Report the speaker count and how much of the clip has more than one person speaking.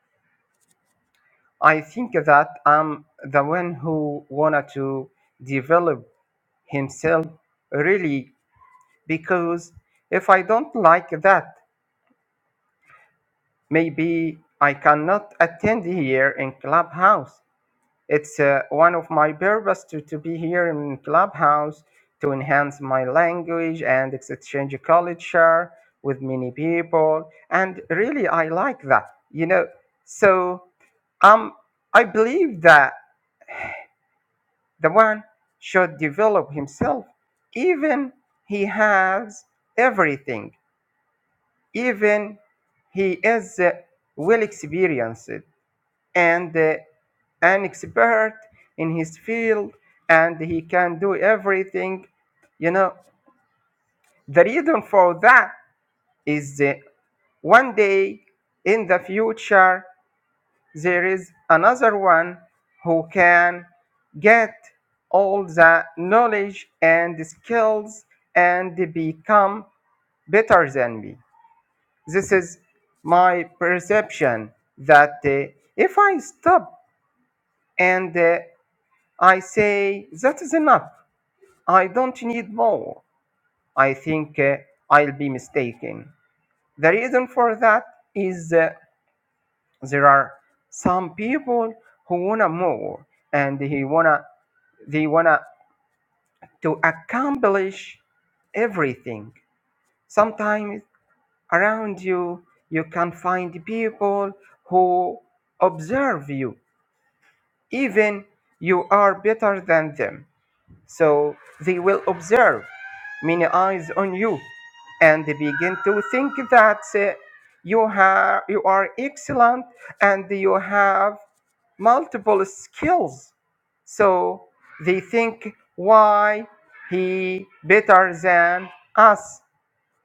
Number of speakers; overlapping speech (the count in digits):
1, no overlap